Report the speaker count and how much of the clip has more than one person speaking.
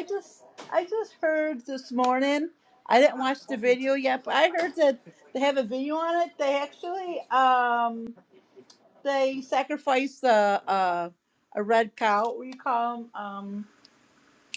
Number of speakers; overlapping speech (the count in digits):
1, no overlap